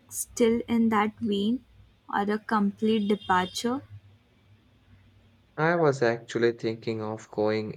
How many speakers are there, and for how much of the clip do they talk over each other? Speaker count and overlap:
2, no overlap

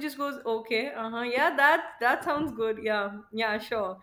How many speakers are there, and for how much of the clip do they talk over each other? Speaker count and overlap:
1, no overlap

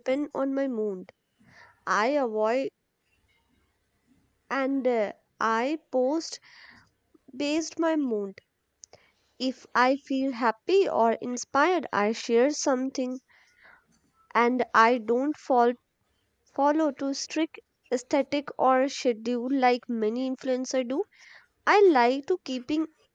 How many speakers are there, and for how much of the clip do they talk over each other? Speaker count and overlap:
1, no overlap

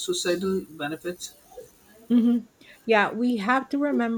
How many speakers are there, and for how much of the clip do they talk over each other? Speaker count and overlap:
2, no overlap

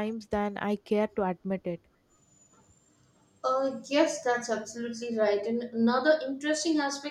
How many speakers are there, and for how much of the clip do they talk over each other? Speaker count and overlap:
2, no overlap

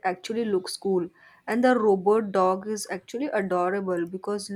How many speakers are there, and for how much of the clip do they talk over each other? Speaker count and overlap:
1, no overlap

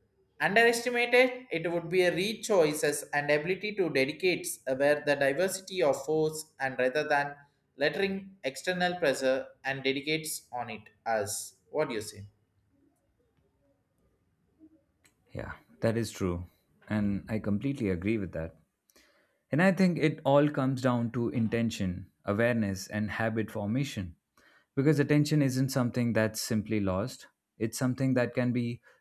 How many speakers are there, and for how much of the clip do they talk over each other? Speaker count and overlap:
2, no overlap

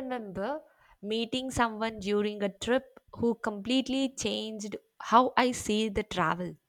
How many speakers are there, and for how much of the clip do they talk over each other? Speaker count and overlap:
1, no overlap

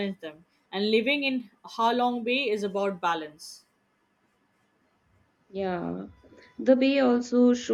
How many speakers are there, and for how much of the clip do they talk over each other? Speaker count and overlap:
2, no overlap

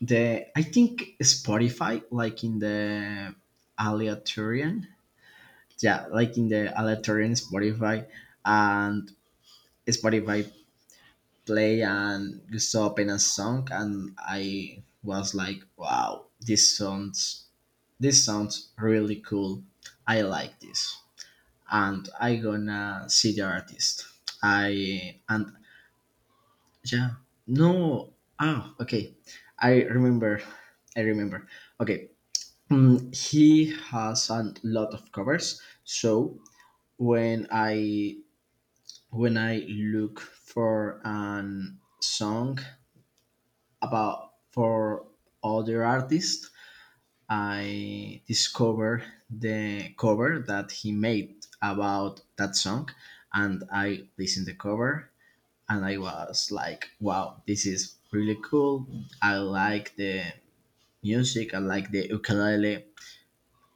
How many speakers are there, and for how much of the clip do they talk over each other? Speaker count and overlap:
1, no overlap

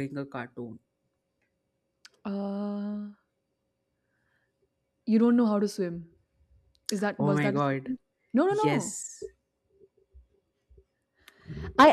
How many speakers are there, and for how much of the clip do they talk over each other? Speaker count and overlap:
2, about 9%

